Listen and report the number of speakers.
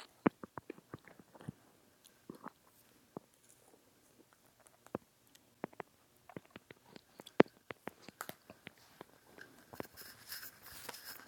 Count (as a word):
zero